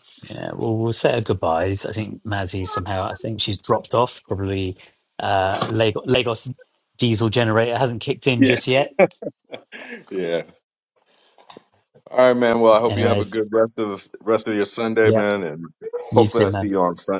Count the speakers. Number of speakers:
two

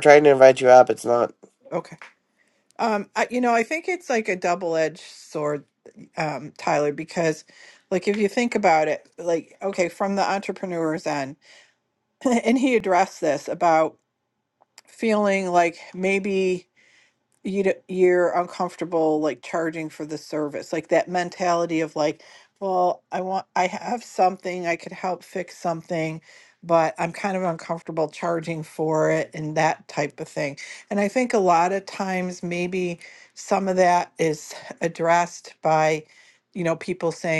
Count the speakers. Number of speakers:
two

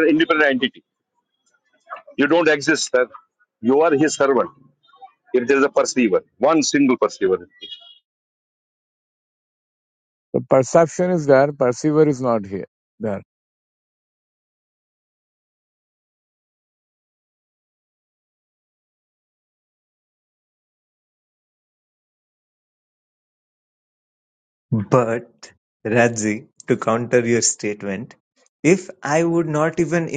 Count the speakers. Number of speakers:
three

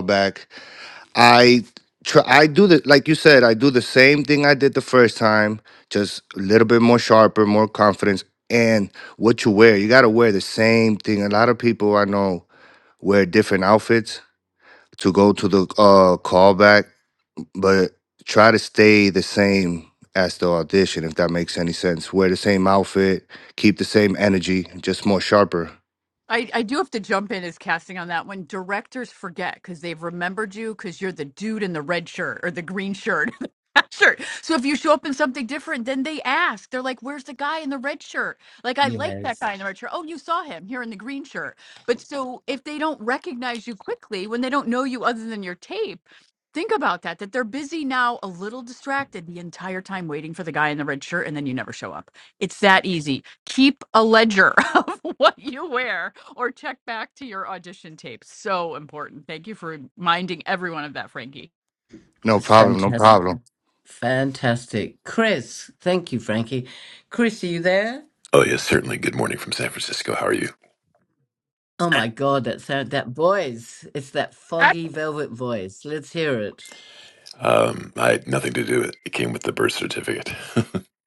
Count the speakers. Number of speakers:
four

